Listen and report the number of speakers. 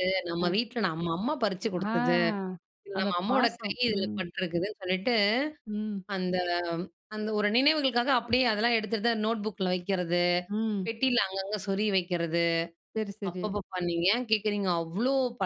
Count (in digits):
2